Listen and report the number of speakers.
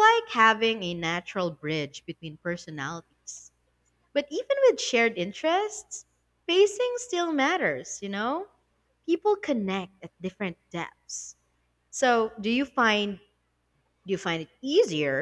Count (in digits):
1